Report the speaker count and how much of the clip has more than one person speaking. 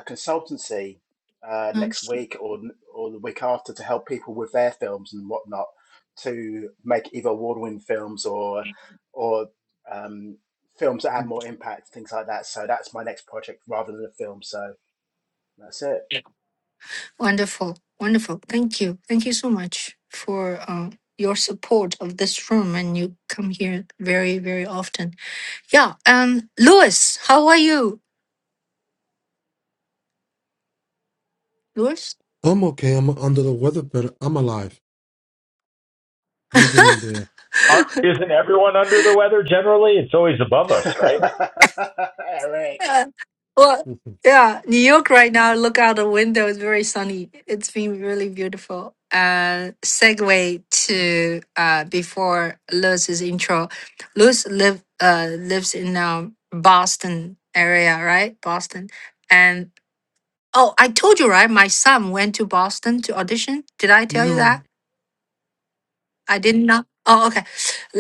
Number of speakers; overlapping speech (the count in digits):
4, about 1%